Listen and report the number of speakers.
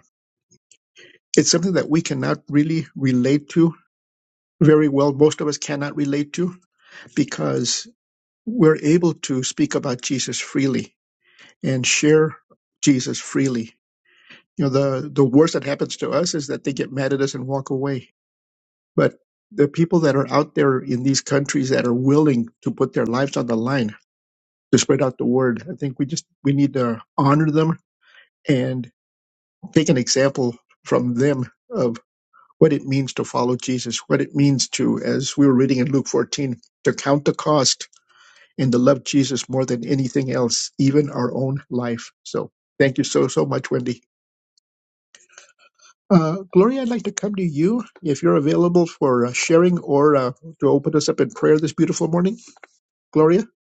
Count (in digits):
1